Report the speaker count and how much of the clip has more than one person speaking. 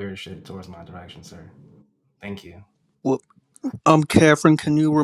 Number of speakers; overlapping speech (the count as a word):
two, no overlap